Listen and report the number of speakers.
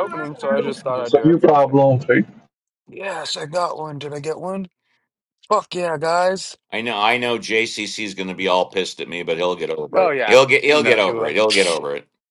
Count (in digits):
3